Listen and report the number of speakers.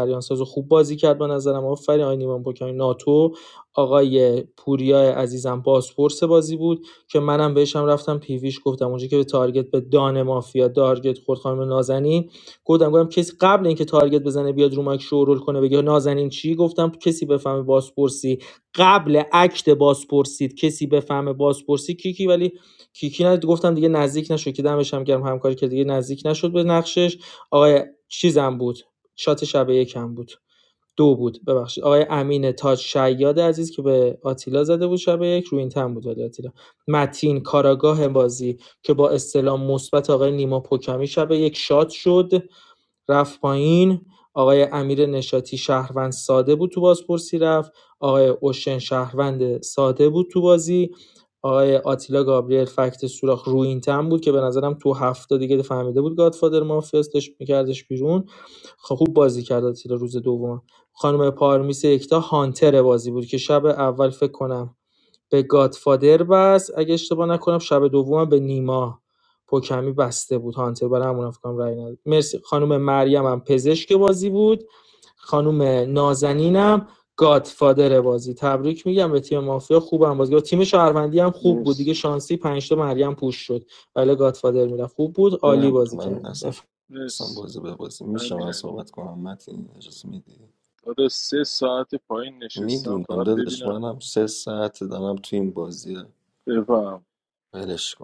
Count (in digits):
3